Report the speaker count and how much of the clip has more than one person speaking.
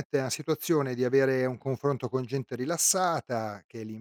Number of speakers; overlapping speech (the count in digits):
1, no overlap